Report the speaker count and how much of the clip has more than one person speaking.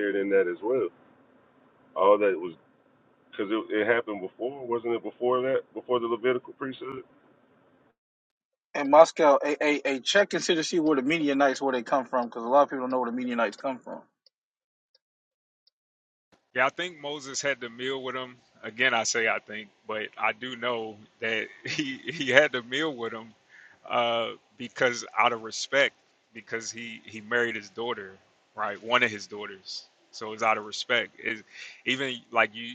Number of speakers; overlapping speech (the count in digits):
3, no overlap